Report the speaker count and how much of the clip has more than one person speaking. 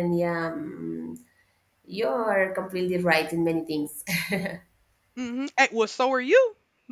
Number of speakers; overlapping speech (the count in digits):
2, no overlap